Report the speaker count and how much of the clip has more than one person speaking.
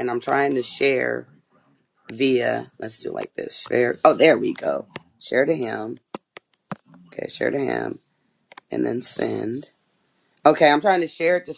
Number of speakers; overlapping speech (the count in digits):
1, no overlap